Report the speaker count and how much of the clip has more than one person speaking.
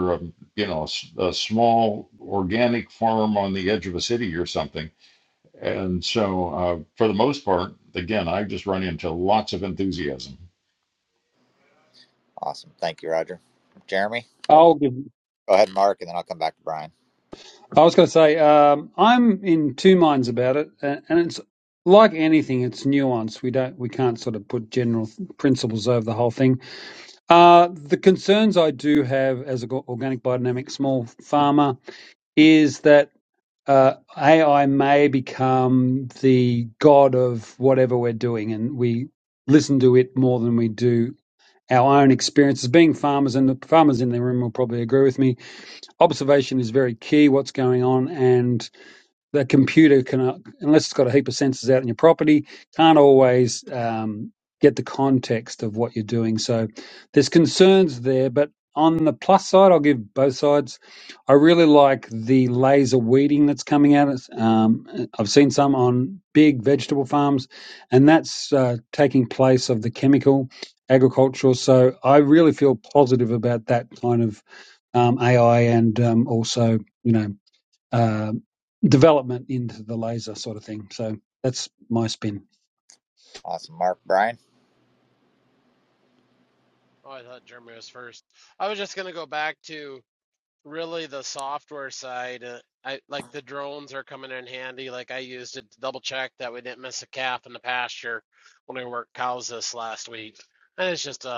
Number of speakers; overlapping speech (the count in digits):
4, under 1%